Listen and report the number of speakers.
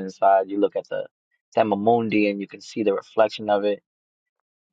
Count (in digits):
1